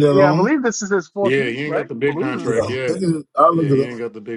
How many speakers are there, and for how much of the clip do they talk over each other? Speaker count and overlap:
3, about 61%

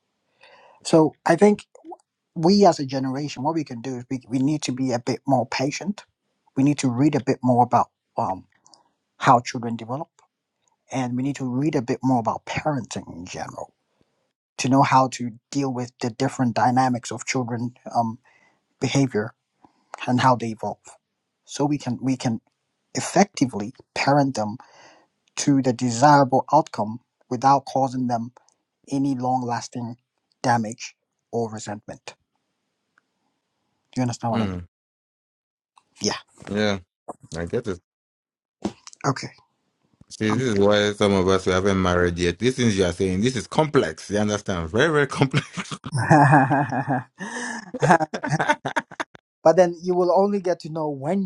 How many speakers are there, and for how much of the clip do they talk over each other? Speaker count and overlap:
2, about 1%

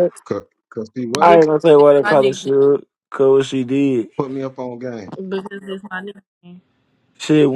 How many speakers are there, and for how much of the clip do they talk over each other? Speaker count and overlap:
3, about 13%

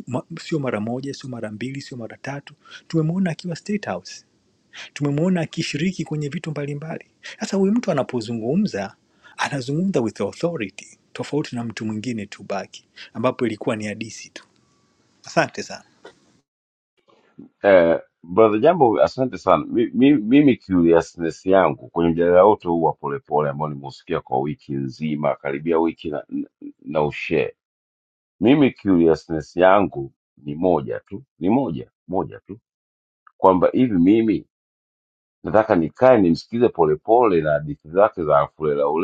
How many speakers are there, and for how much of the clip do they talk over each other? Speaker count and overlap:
2, no overlap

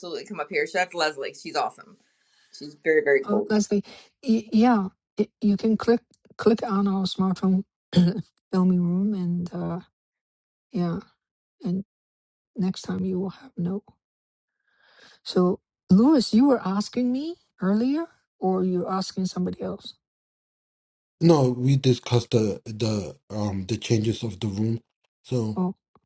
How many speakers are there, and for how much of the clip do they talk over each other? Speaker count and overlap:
3, about 1%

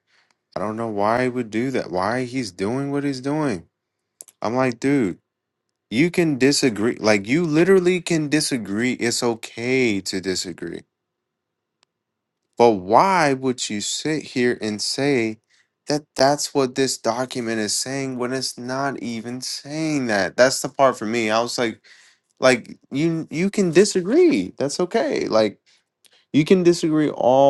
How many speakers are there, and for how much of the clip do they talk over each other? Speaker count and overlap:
1, no overlap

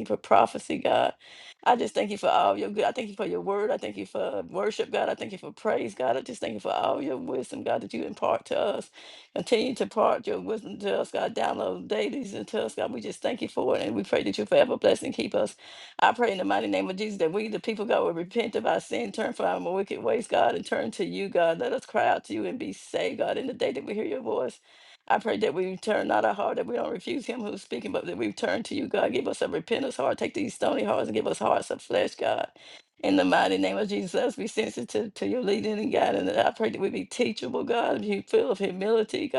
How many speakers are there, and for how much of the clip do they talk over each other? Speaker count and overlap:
1, no overlap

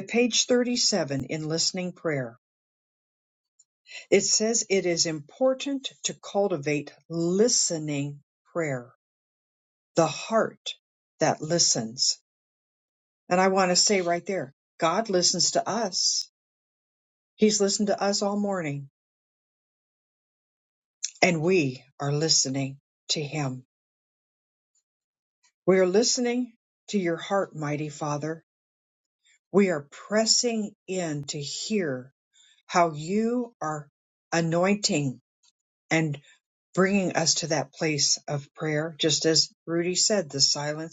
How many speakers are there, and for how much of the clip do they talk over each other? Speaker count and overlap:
1, no overlap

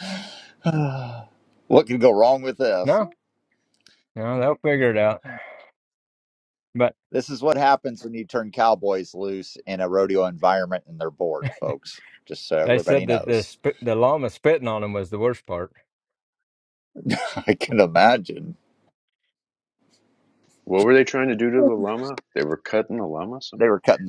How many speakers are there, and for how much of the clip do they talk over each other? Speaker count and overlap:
3, about 4%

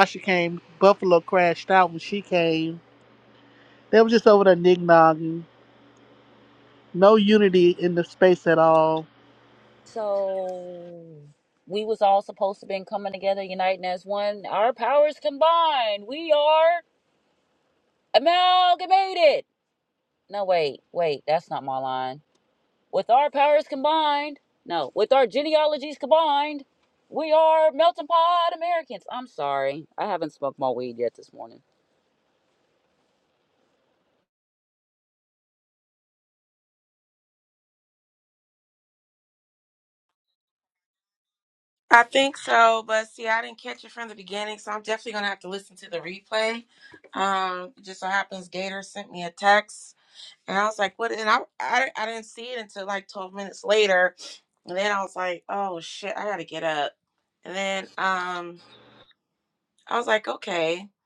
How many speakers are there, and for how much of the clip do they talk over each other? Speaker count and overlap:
3, no overlap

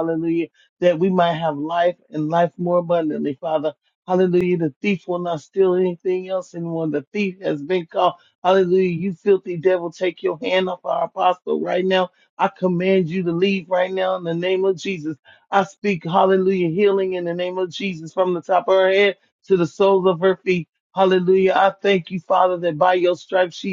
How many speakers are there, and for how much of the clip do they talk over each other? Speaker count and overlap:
1, no overlap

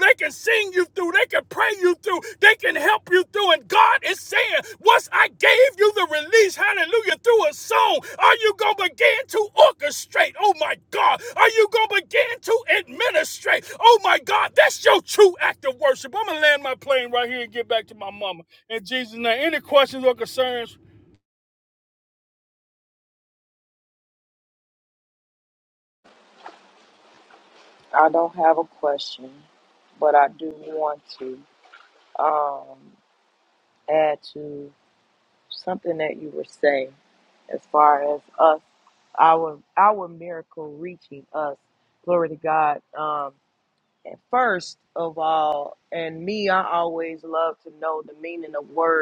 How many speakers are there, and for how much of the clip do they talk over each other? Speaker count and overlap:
2, no overlap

